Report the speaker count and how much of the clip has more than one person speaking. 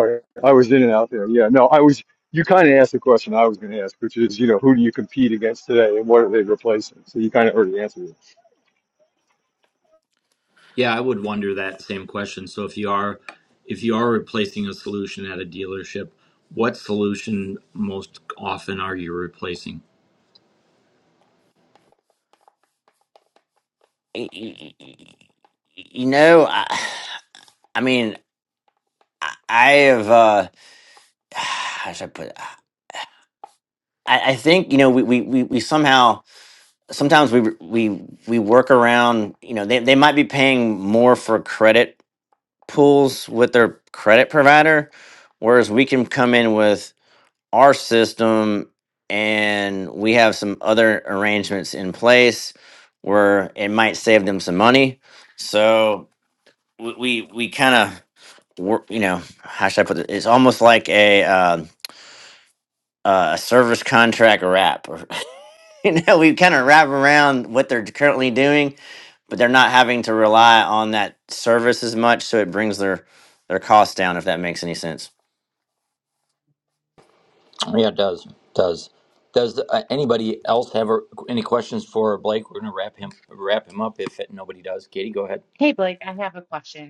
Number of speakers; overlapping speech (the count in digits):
4, no overlap